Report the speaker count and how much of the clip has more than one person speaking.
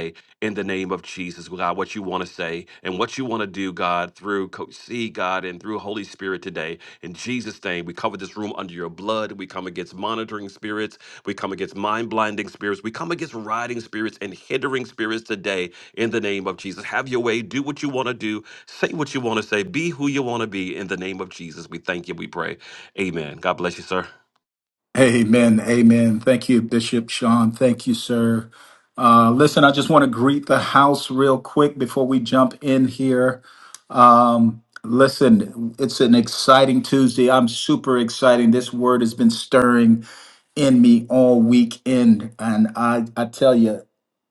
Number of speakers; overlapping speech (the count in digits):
2, no overlap